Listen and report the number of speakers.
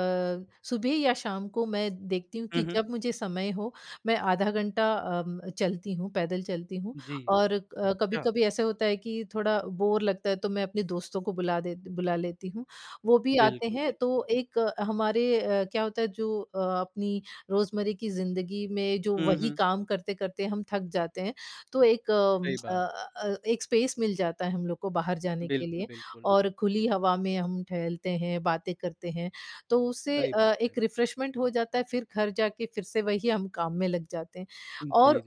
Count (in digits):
2